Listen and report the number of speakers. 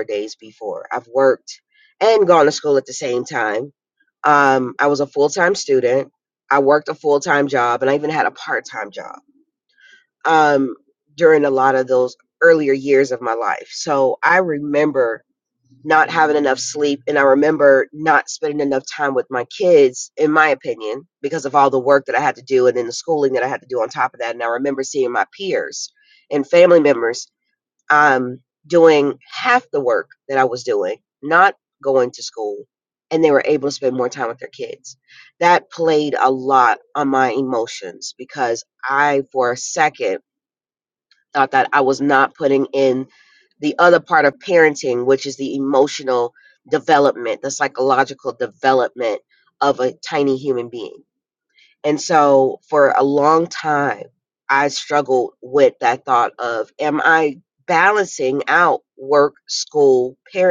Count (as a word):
one